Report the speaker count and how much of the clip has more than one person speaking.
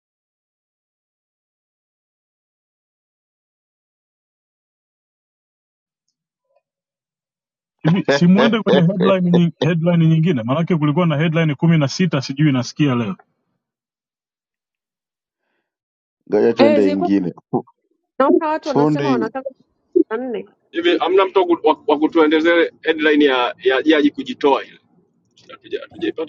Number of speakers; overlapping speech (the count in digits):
4, about 4%